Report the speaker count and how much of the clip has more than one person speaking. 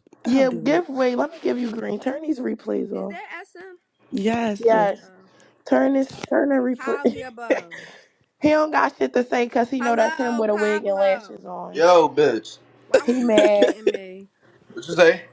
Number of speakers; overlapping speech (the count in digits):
4, about 22%